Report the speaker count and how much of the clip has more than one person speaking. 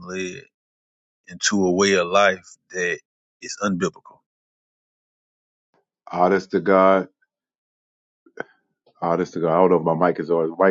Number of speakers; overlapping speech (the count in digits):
2, no overlap